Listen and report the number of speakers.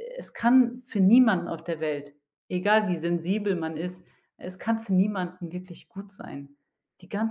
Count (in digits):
1